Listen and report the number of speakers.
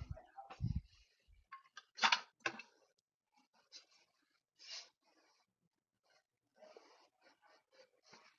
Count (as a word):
zero